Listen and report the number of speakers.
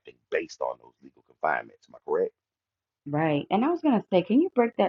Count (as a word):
two